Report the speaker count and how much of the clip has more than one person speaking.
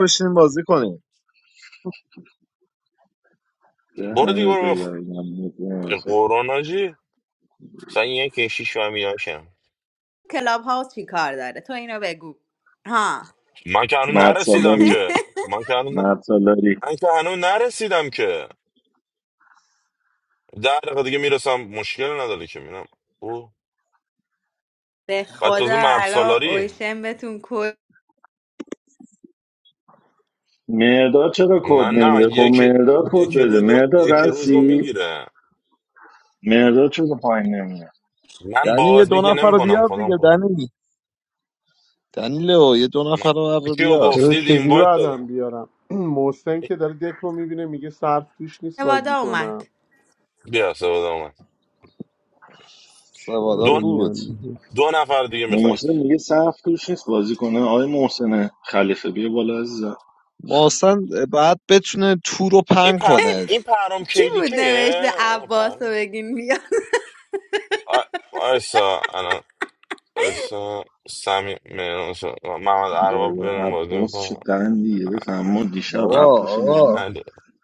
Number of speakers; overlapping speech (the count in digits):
5, about 20%